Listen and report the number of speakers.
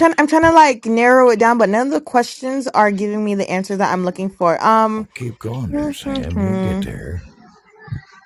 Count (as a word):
two